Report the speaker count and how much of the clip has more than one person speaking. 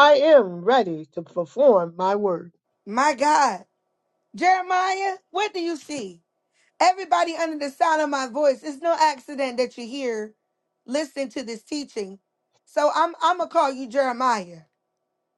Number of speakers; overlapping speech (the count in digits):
2, no overlap